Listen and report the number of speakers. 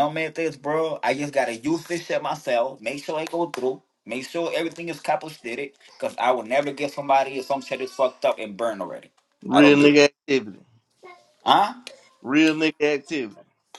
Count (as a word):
two